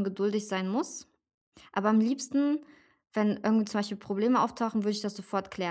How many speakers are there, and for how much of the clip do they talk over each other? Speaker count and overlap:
one, no overlap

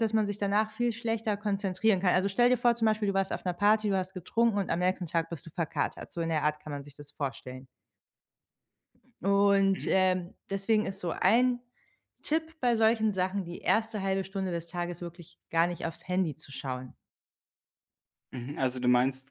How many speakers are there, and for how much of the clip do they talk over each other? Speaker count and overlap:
two, about 1%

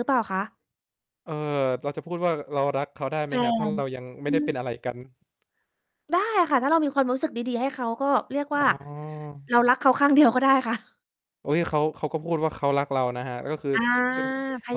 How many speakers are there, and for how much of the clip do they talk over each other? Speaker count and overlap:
two, about 7%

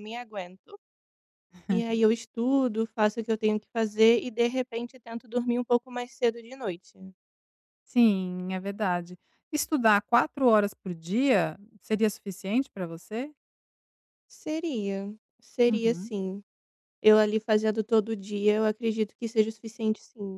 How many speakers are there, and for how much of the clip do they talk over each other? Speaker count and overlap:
two, about 2%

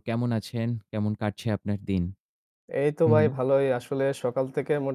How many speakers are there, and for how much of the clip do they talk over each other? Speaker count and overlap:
two, about 5%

